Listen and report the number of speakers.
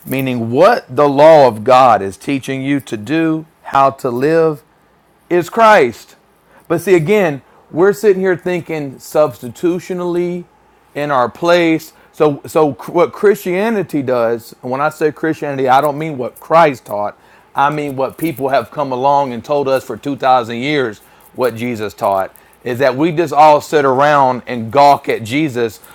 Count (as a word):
one